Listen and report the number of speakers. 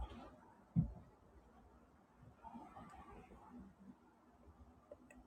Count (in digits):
0